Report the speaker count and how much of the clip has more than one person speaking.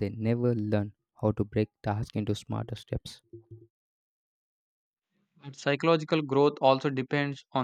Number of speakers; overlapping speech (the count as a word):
two, no overlap